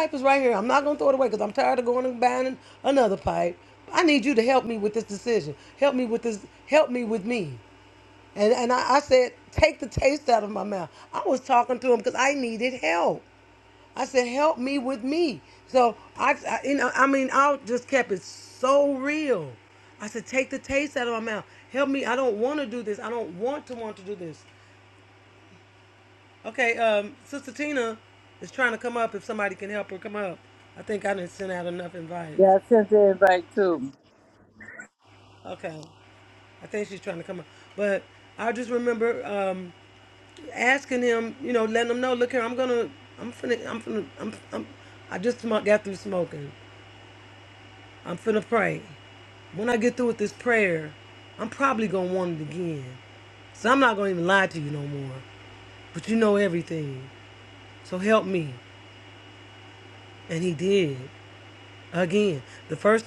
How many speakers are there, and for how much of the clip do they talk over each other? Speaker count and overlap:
two, no overlap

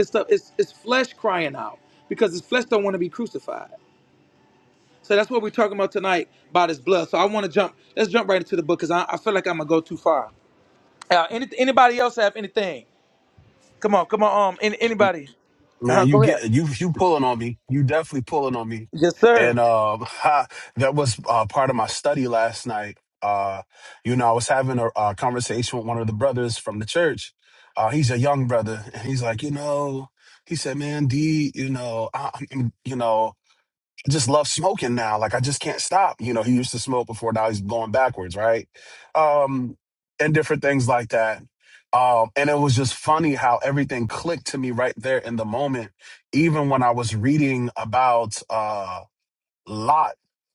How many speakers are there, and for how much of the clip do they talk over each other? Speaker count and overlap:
two, about 2%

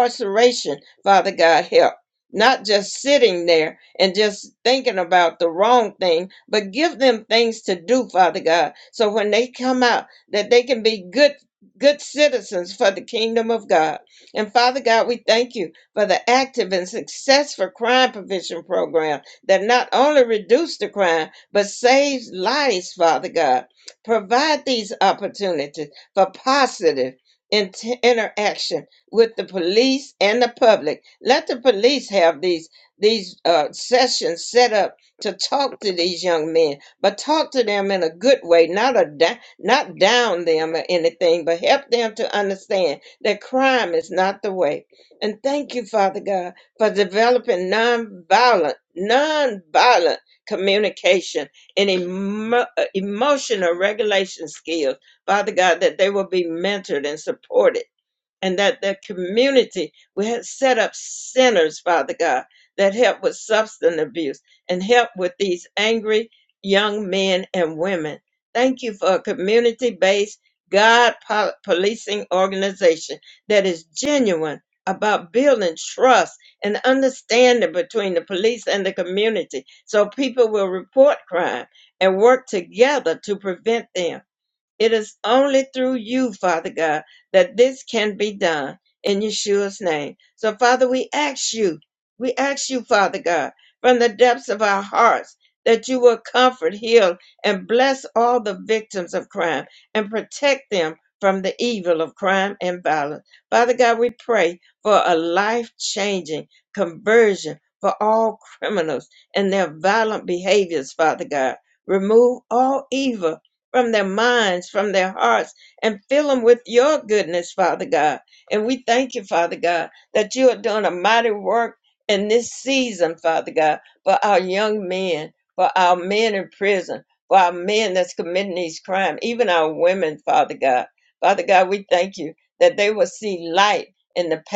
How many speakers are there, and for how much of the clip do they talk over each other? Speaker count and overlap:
one, no overlap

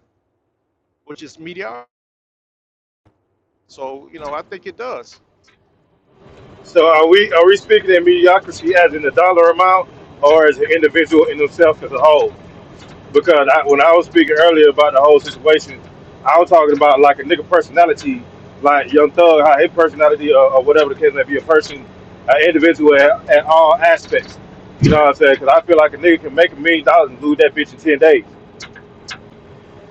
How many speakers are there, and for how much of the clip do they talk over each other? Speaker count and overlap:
two, no overlap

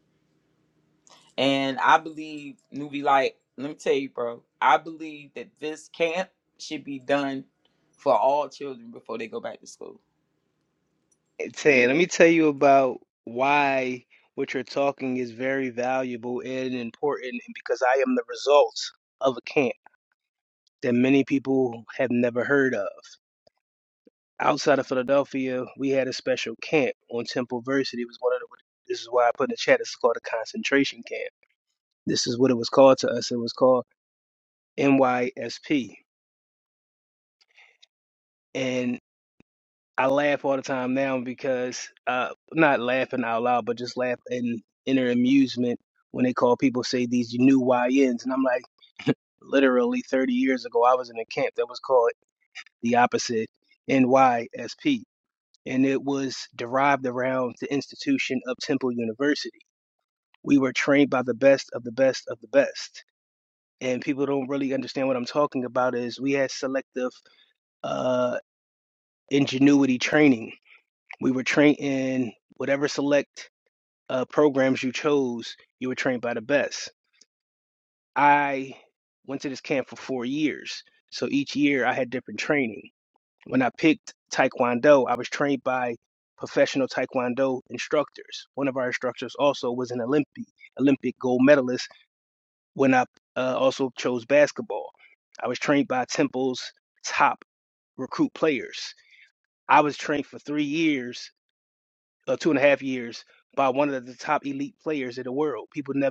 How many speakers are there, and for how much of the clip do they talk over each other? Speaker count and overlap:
two, no overlap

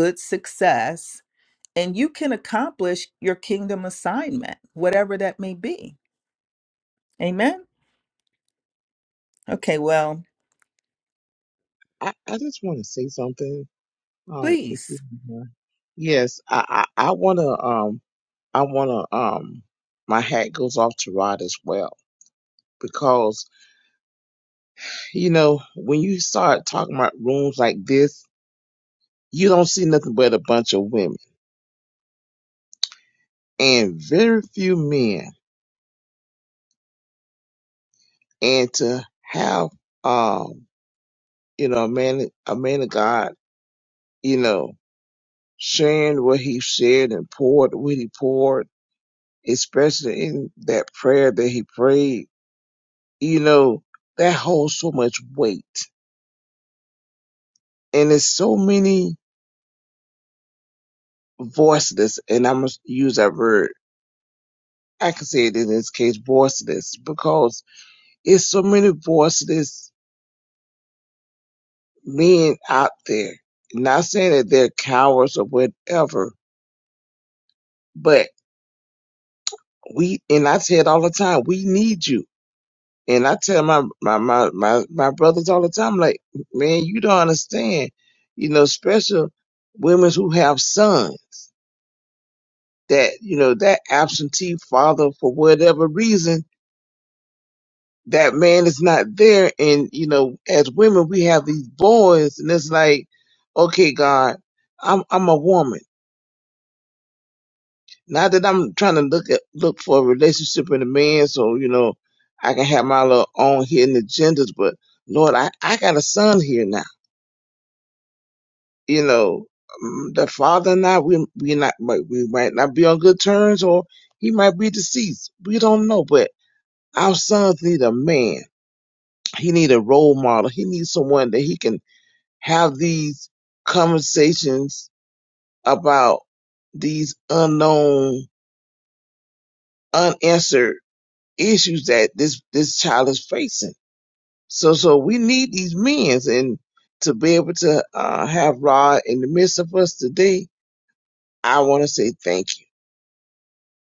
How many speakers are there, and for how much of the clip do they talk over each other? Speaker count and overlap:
two, under 1%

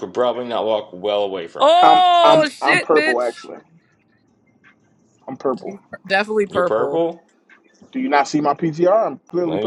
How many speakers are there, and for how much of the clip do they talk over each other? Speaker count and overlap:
three, about 27%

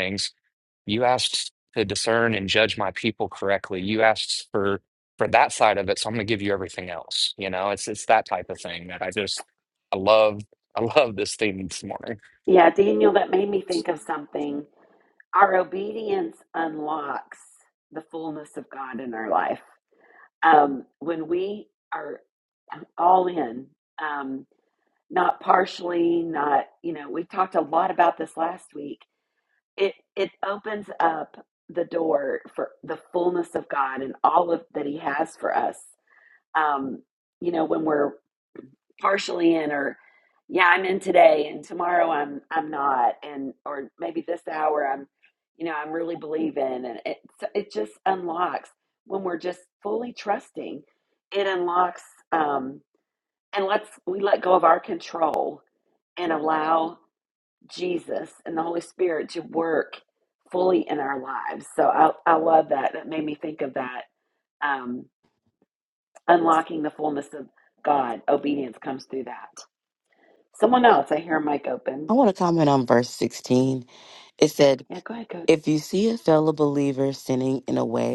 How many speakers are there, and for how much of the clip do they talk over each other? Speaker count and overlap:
three, under 1%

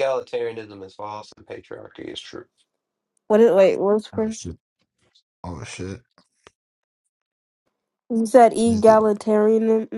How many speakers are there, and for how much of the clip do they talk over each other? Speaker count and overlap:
three, about 6%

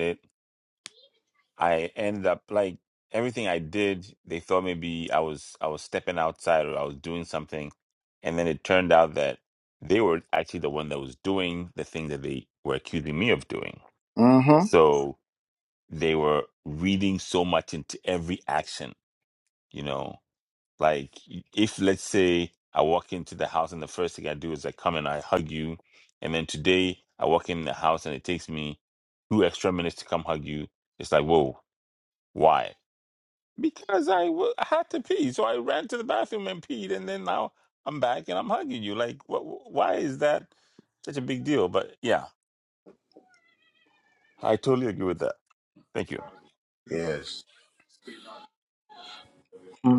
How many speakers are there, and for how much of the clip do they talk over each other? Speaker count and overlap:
two, no overlap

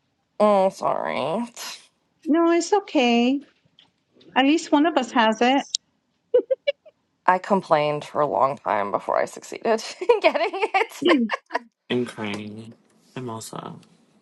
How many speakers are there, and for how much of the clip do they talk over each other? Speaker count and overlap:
three, no overlap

